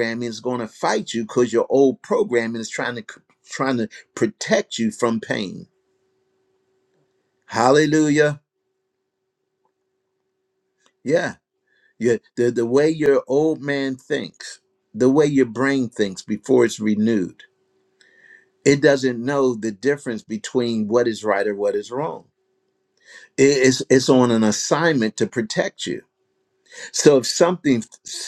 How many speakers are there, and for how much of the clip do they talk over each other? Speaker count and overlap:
1, no overlap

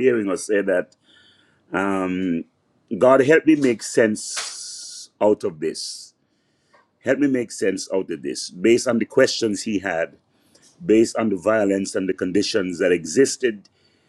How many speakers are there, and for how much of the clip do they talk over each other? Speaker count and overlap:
1, no overlap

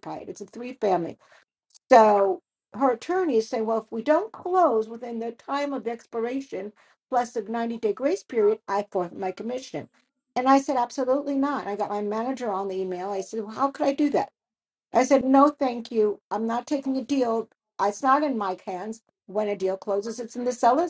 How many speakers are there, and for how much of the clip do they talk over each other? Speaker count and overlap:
1, no overlap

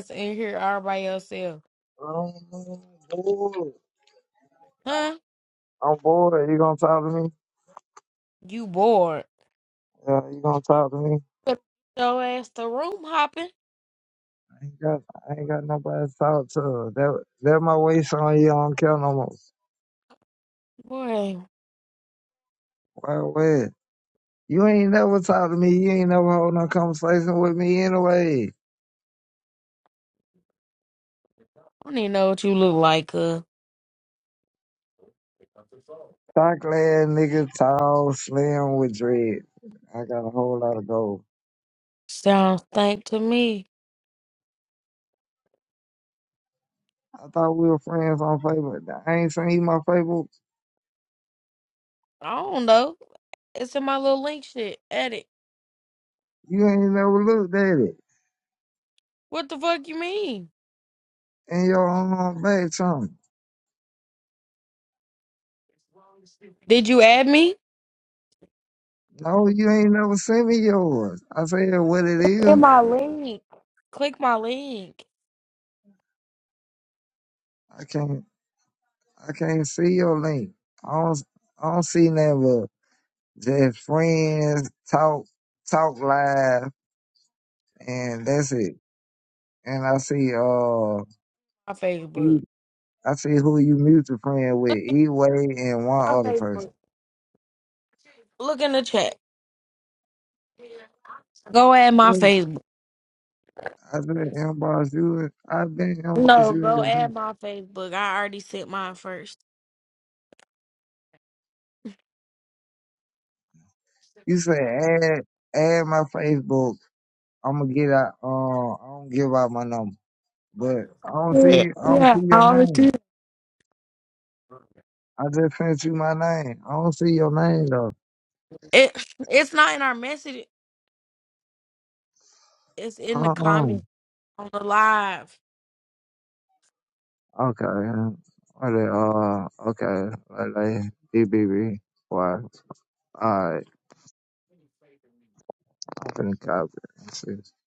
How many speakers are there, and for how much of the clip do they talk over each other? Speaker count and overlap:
2, about 3%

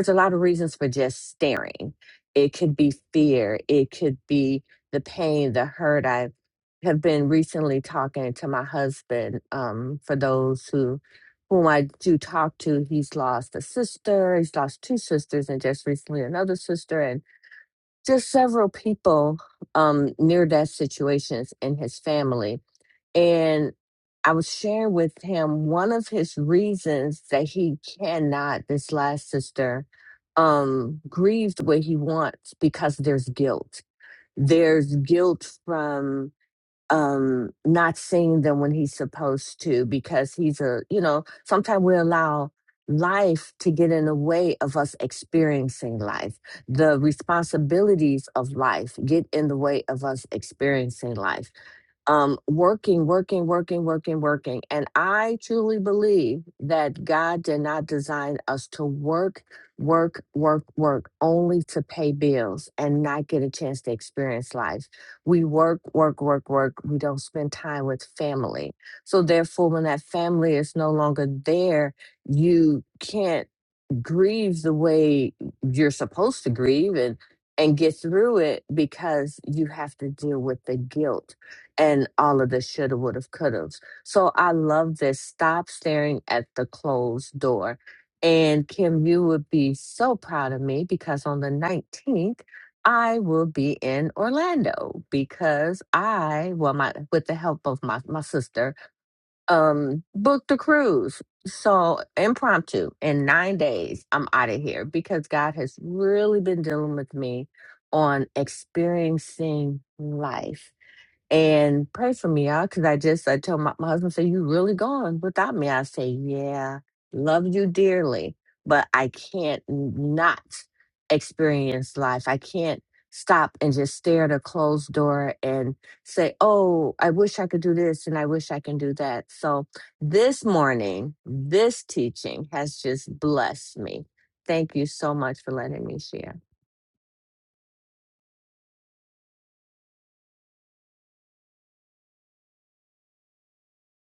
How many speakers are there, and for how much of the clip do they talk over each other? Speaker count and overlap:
1, no overlap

